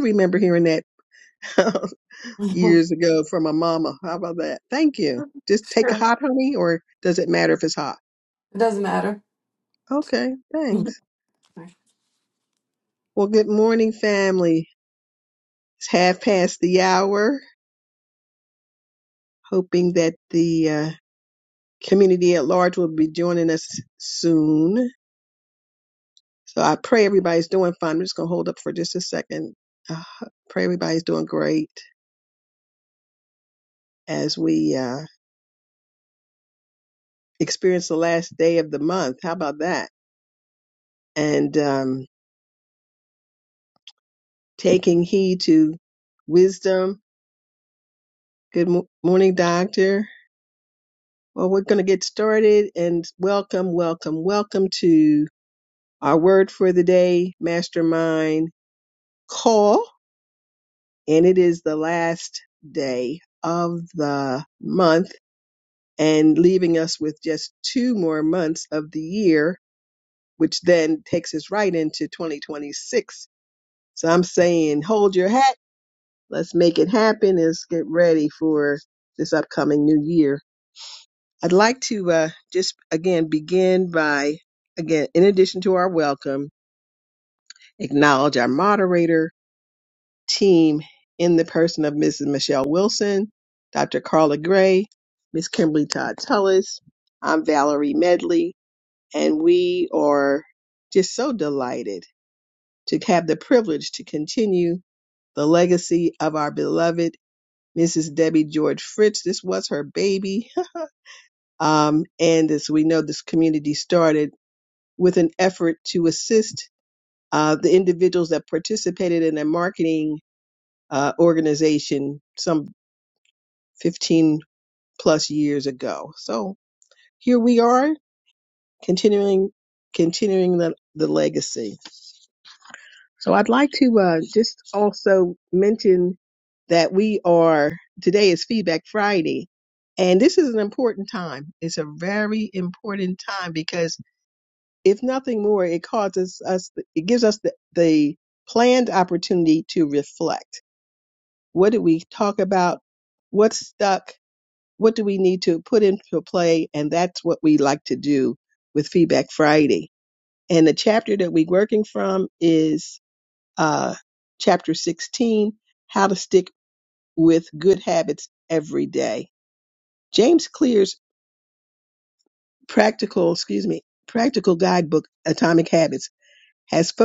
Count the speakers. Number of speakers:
two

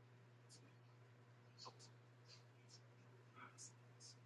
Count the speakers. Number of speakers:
zero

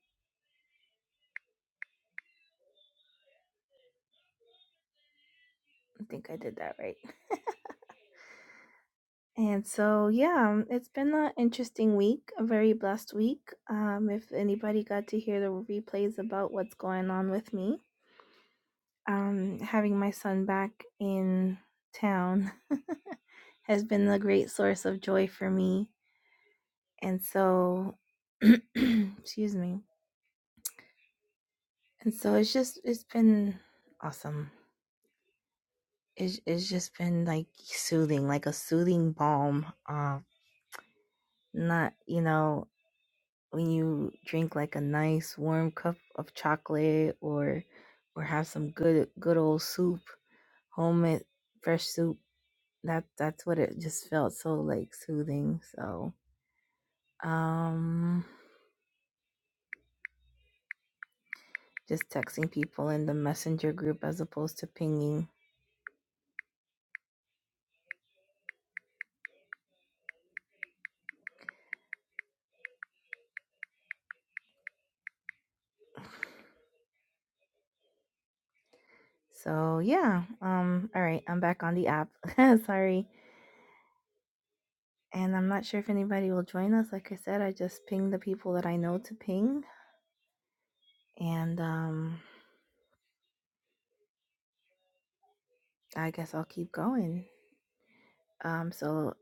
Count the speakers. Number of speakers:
one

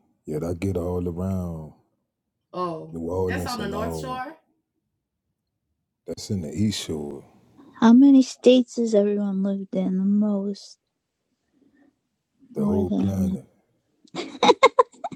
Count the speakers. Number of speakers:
three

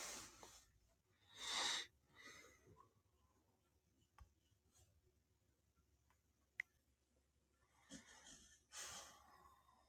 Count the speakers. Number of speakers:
zero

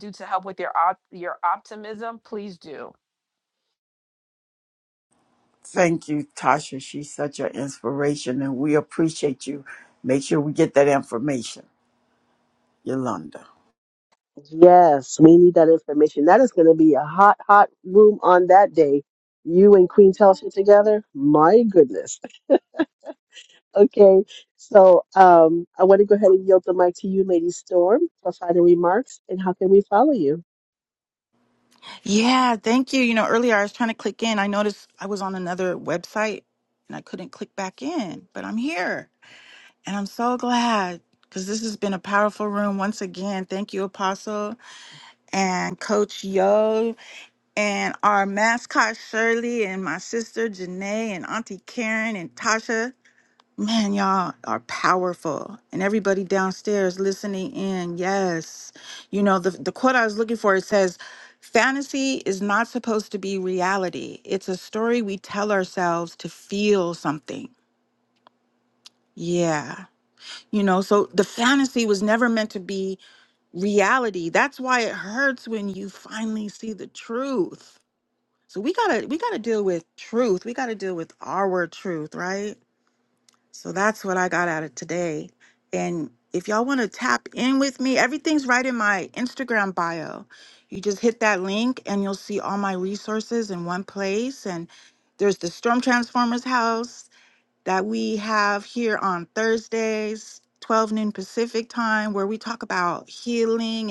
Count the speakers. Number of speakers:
four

